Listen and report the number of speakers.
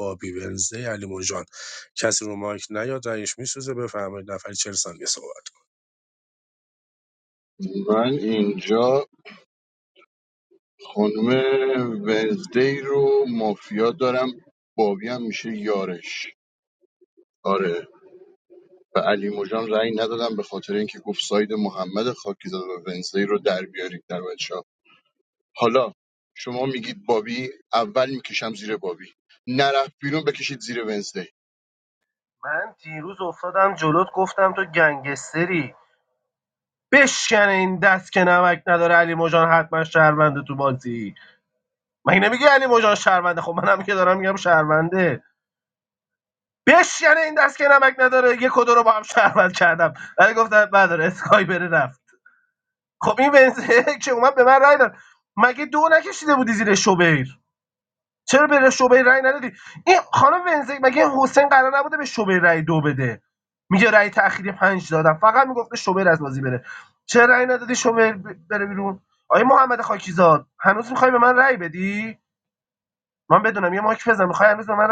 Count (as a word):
three